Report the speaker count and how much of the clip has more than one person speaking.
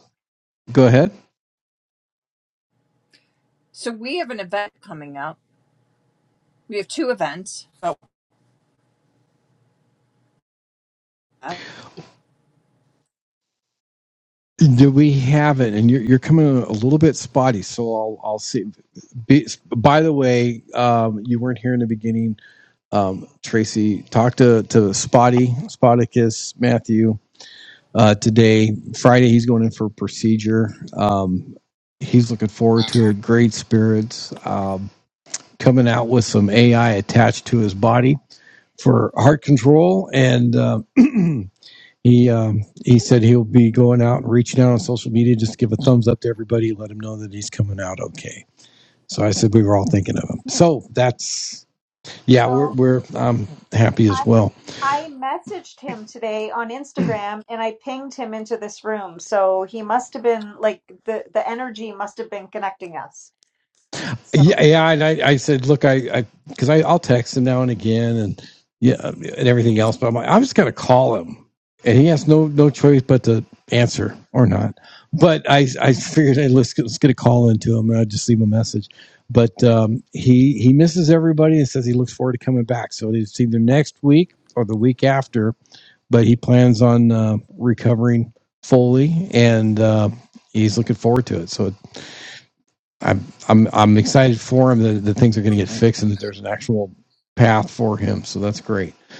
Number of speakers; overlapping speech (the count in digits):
3, about 1%